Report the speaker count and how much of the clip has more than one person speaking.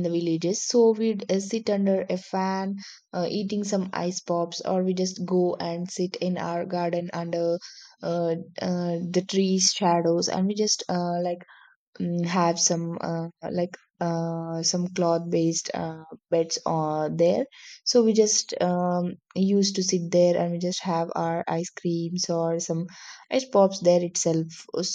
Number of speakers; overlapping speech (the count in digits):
1, no overlap